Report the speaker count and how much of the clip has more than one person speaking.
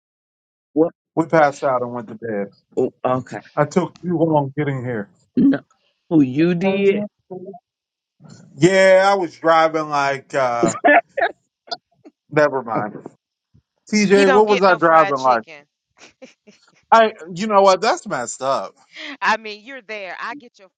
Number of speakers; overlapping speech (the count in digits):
3, about 8%